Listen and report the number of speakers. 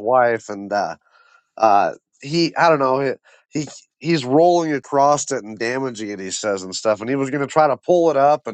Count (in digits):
1